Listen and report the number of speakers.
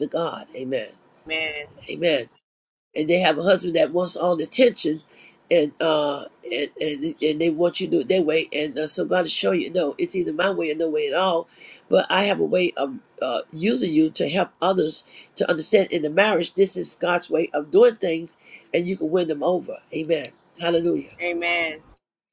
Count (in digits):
2